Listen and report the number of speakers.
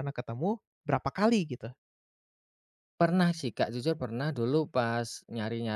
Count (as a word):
two